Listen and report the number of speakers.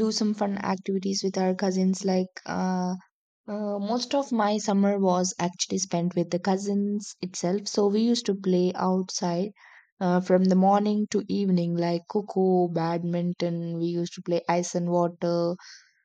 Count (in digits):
1